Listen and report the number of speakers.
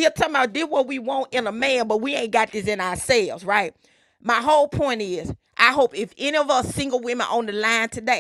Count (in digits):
1